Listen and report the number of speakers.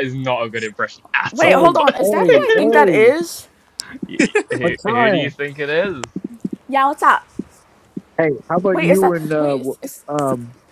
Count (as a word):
three